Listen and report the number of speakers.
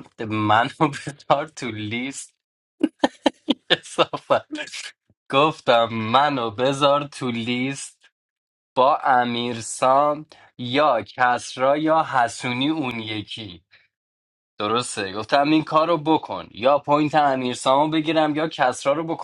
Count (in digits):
1